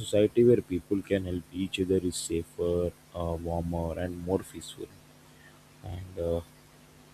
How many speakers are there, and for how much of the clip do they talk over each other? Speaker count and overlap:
1, no overlap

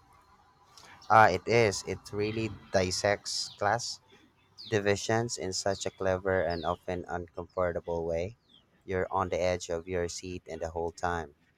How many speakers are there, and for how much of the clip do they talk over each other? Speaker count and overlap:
1, no overlap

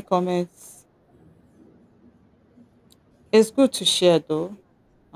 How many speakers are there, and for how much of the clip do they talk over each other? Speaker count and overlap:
1, no overlap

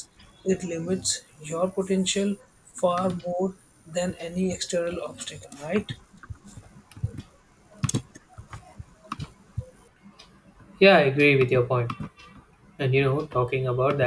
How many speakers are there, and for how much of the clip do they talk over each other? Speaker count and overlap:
2, no overlap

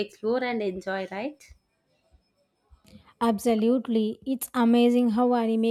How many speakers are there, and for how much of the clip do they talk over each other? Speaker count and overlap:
2, no overlap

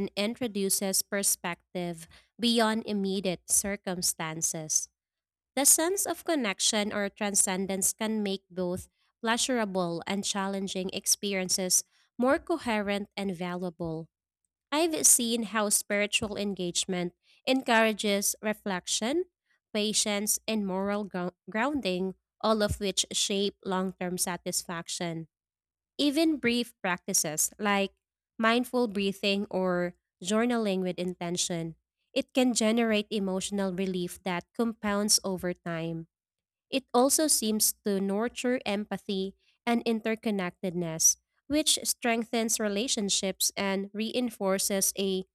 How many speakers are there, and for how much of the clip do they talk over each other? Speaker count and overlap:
1, no overlap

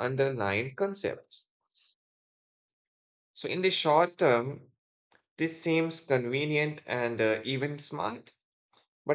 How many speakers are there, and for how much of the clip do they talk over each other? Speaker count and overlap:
1, no overlap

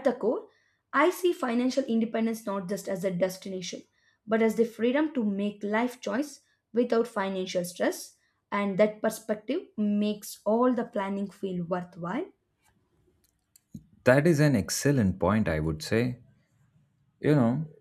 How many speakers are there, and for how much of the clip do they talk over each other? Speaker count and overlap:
2, no overlap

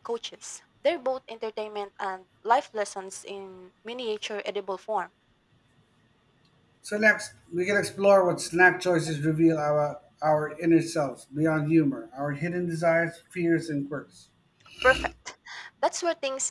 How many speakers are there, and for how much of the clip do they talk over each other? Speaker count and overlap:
2, no overlap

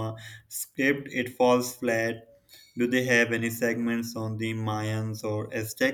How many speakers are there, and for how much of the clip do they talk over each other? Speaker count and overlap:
1, no overlap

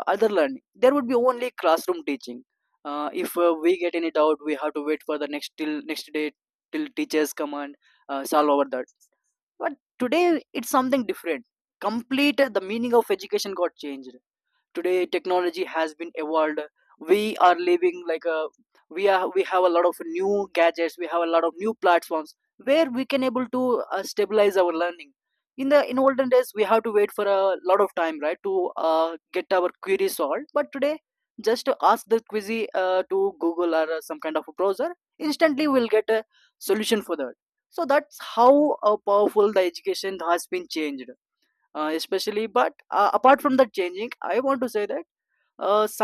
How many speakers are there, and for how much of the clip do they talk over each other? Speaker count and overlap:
1, no overlap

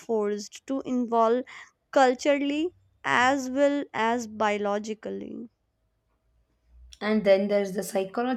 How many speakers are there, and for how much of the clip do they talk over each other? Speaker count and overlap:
2, no overlap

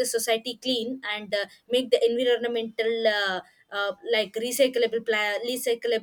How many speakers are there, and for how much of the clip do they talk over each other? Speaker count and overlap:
1, no overlap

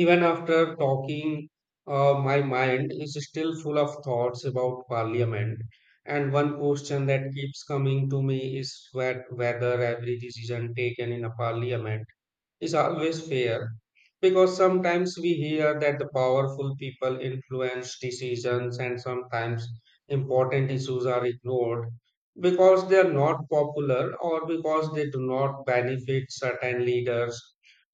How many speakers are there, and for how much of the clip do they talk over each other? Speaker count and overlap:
1, no overlap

